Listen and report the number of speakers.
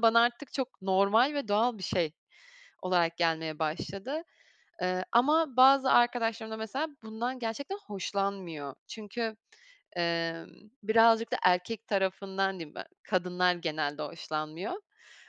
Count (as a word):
one